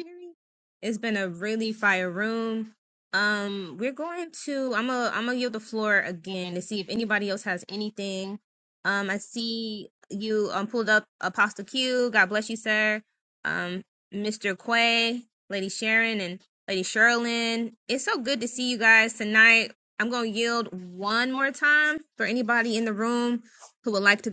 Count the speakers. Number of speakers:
1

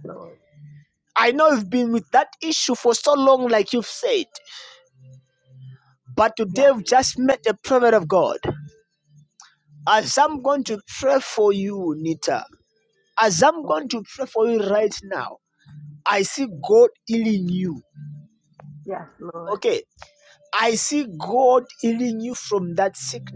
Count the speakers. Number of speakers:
2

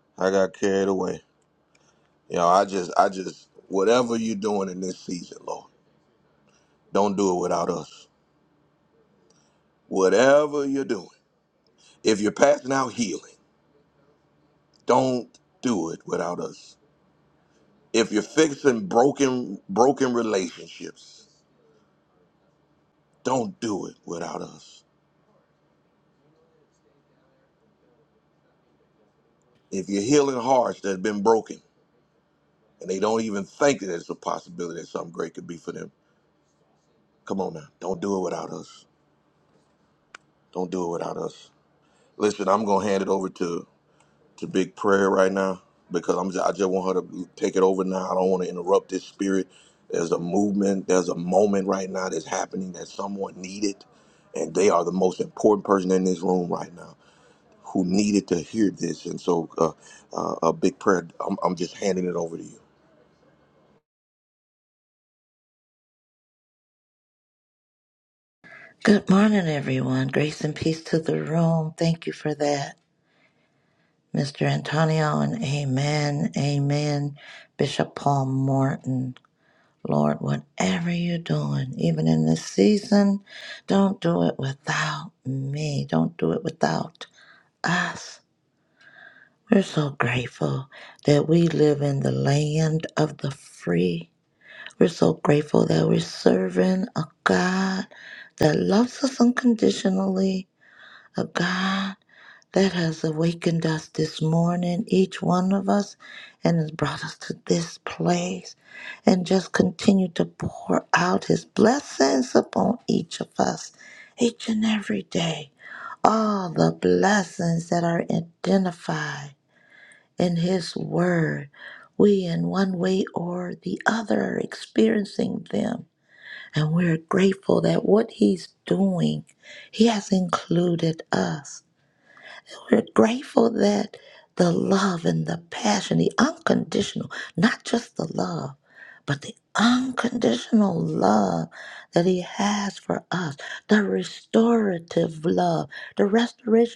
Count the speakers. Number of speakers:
2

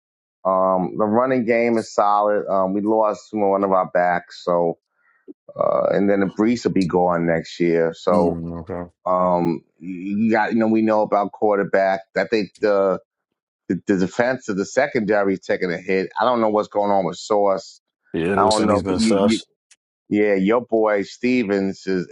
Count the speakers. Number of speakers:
2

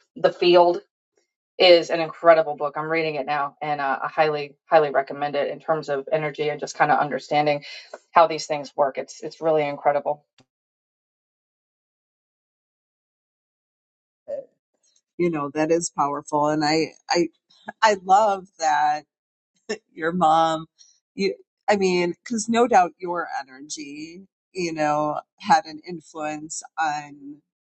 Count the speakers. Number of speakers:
2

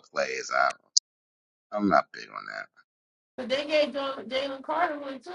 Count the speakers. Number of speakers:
2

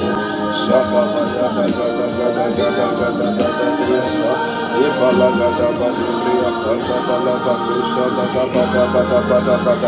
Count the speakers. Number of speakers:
0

